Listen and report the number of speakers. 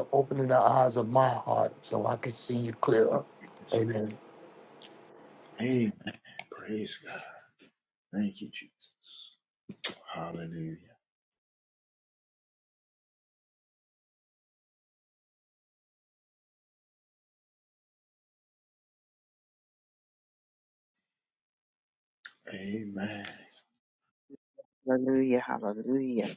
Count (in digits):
3